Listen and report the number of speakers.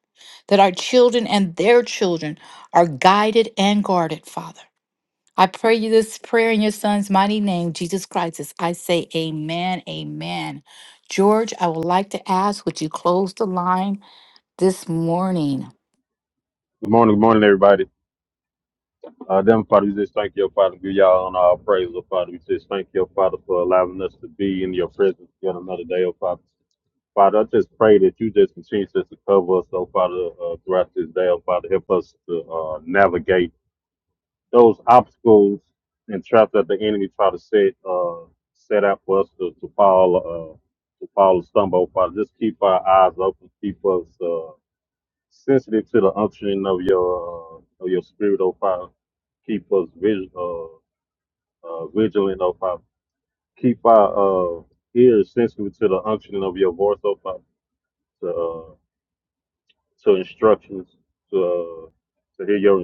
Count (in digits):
2